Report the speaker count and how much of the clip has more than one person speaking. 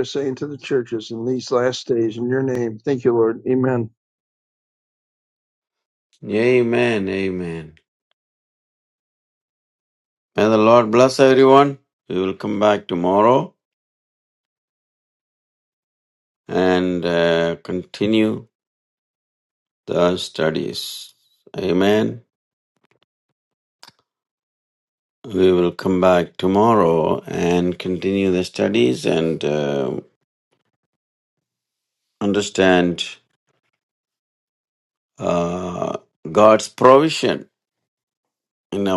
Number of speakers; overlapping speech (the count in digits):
2, no overlap